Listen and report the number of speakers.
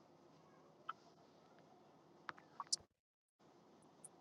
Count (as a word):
zero